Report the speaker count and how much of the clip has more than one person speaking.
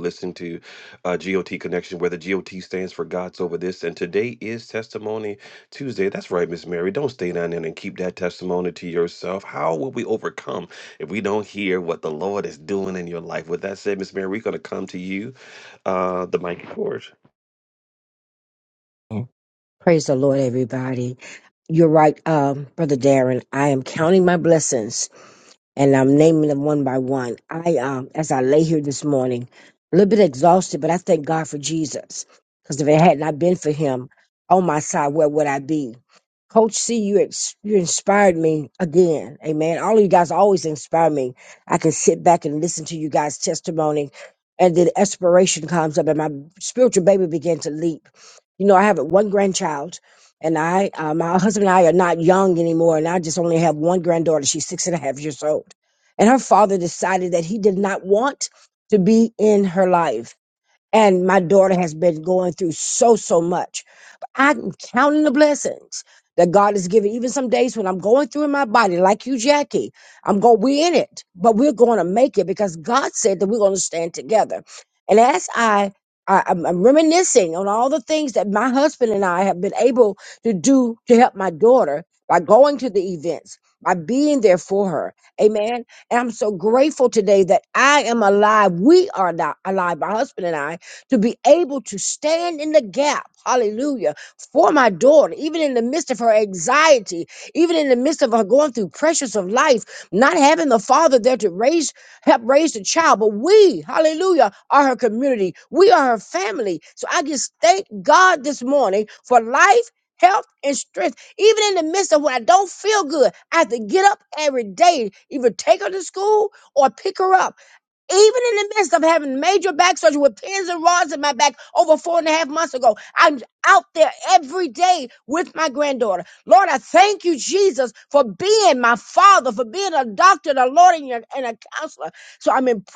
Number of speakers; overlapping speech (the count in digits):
2, no overlap